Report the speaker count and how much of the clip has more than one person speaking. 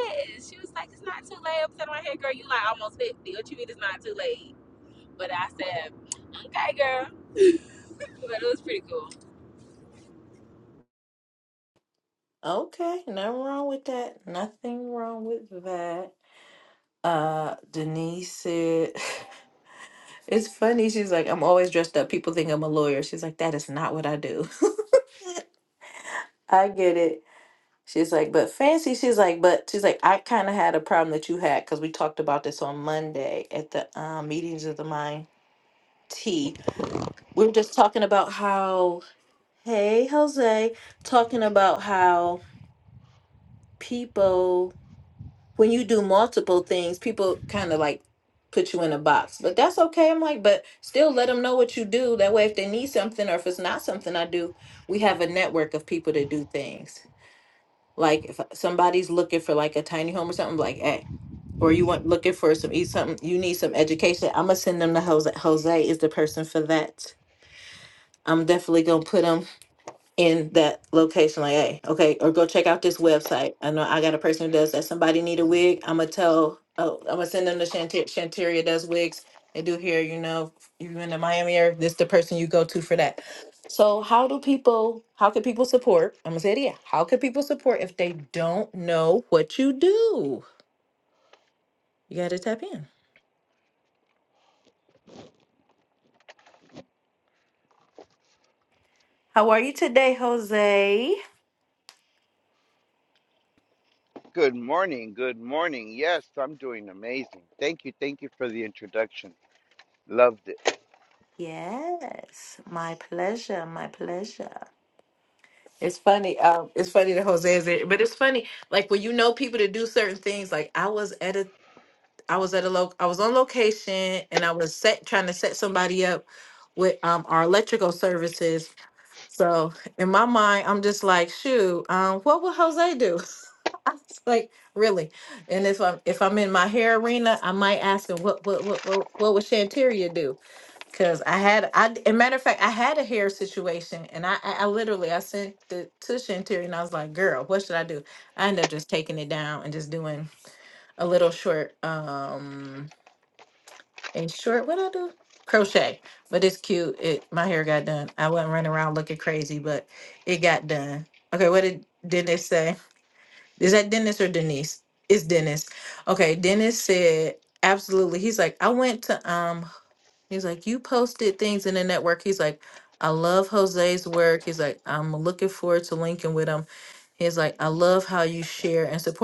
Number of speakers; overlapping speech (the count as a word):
three, no overlap